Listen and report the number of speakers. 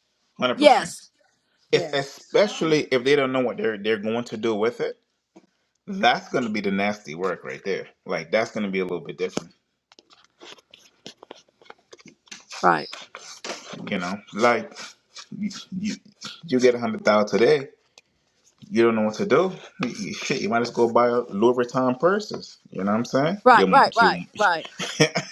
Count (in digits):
2